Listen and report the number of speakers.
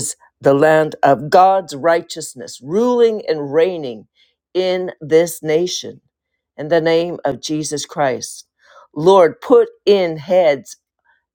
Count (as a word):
one